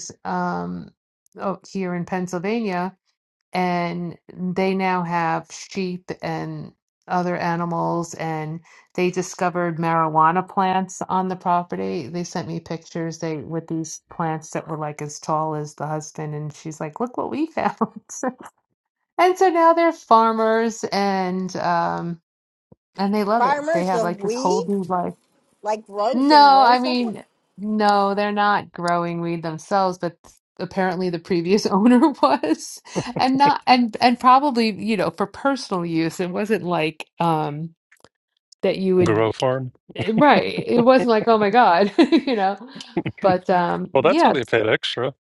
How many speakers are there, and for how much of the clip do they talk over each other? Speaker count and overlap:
3, about 7%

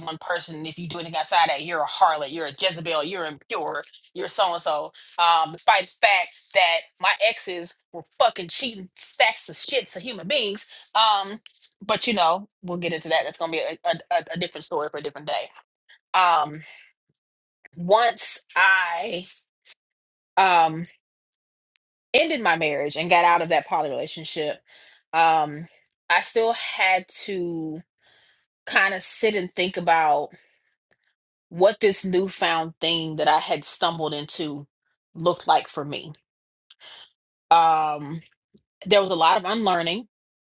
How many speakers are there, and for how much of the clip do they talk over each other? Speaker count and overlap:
1, no overlap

